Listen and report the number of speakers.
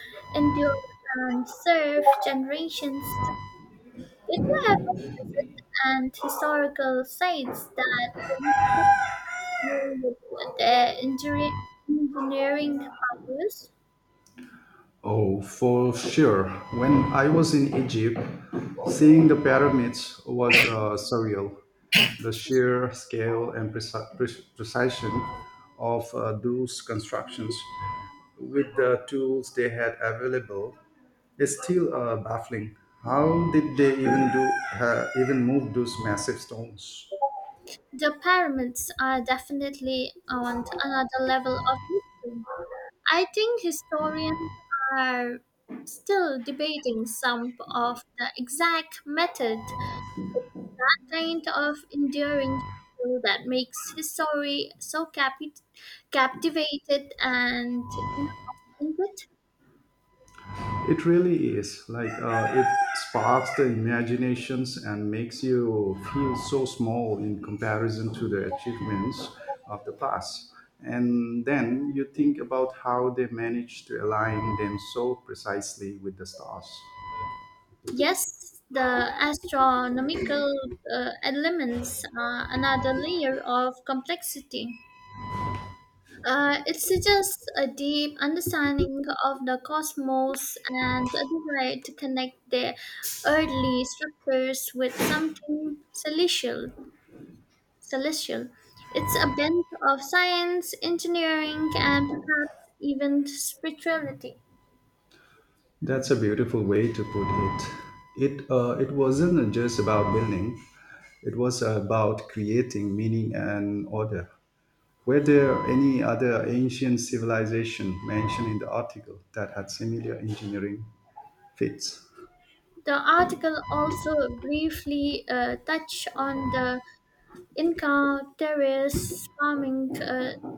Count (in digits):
2